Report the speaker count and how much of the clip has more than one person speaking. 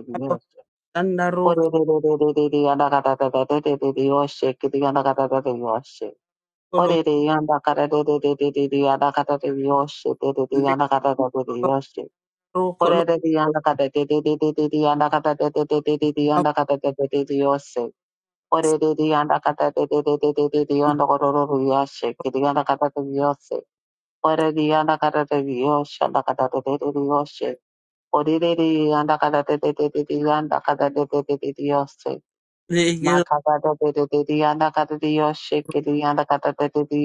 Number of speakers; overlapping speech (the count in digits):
2, about 2%